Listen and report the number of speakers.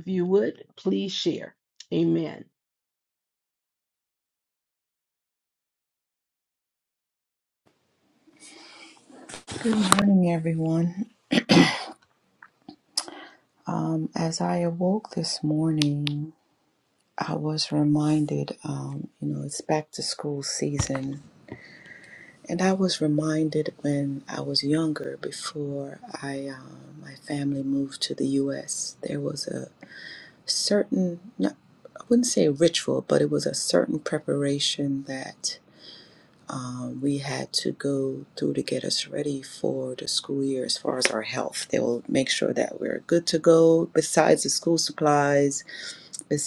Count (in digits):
2